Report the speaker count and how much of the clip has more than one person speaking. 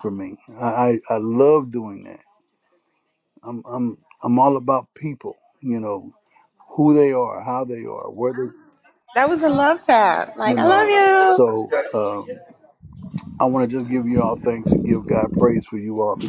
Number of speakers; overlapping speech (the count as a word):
two, about 4%